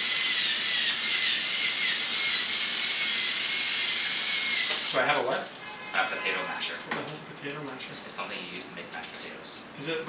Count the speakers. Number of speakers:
two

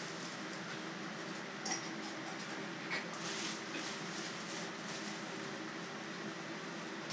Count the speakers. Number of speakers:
zero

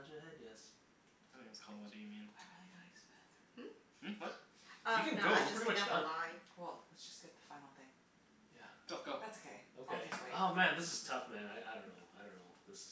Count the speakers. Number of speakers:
four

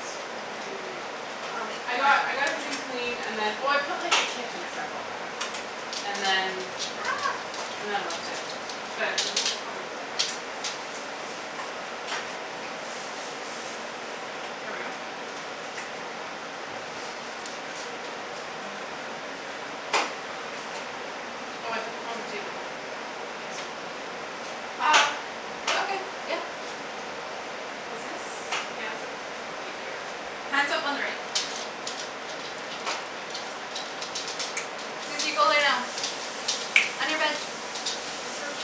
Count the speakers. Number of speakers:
two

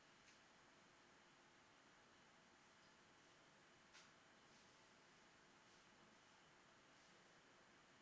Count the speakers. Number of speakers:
zero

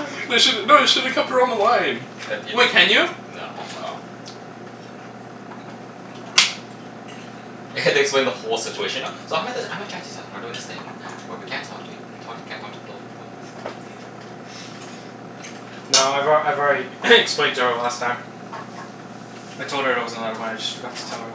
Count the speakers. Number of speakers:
three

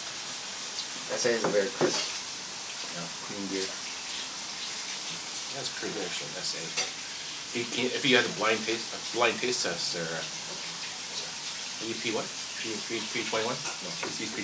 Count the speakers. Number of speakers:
two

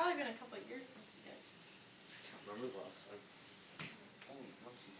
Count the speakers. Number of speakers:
two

